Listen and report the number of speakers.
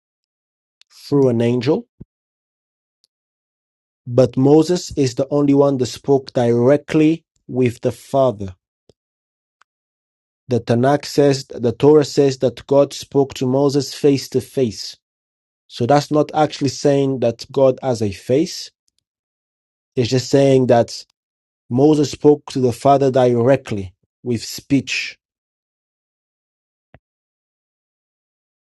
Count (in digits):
1